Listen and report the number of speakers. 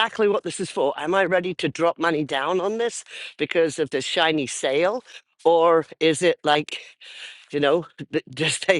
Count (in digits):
1